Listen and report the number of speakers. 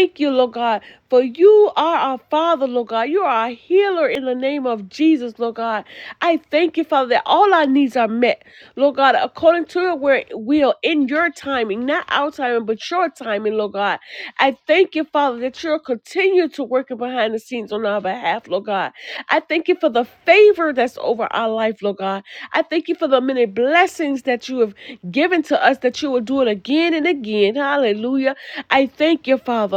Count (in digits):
1